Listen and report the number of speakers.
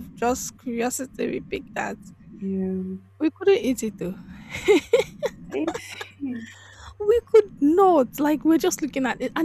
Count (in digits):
2